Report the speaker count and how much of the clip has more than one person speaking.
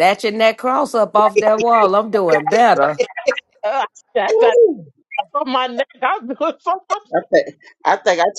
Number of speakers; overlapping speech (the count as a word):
three, about 4%